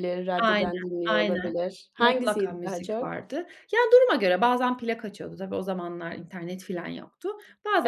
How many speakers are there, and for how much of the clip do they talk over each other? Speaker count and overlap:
2, about 30%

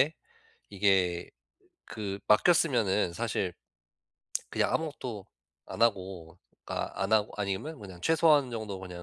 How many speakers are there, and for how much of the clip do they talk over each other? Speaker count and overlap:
1, no overlap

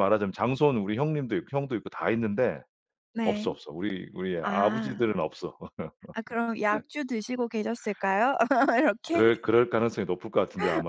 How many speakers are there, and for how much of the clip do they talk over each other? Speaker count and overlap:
2, about 10%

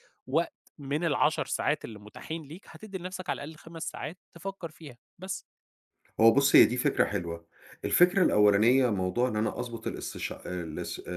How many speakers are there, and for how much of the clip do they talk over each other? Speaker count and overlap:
2, no overlap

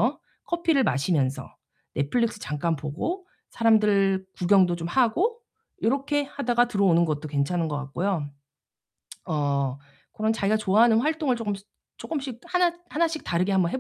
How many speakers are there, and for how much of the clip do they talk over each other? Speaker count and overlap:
1, no overlap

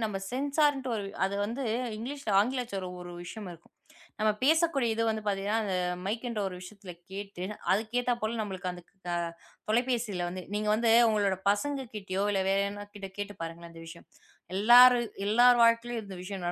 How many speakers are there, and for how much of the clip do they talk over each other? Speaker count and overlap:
1, no overlap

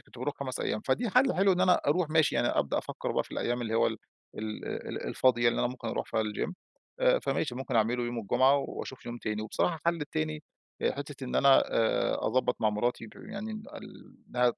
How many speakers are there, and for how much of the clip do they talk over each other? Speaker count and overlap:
1, no overlap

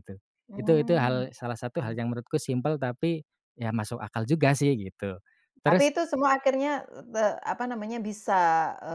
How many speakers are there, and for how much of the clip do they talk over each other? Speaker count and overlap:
2, about 11%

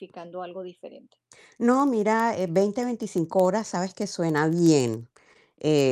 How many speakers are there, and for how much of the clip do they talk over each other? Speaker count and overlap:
2, no overlap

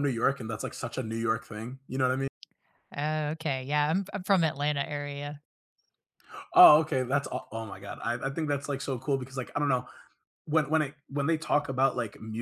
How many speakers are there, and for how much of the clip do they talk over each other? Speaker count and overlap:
2, no overlap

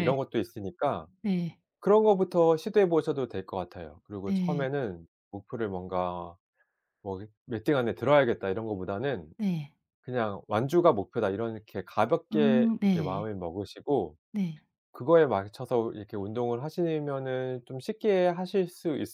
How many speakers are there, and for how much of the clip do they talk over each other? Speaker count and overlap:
2, about 8%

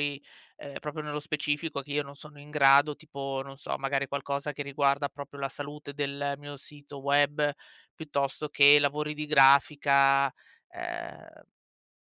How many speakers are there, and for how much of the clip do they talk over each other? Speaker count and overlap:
1, no overlap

